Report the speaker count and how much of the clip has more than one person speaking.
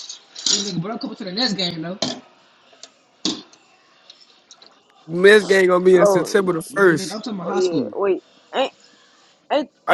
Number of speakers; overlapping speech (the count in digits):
3, about 17%